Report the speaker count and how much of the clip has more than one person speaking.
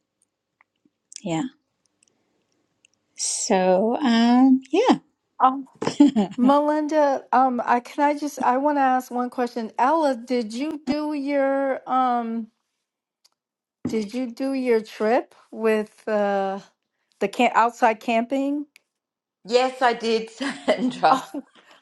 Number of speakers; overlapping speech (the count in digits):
3, about 1%